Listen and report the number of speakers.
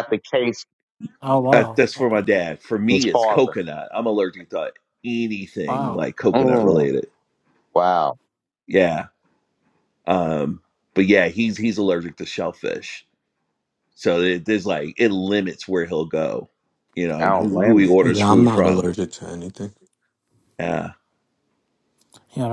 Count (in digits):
4